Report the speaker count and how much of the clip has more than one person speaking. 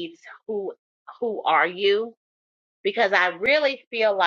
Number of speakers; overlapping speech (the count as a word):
one, no overlap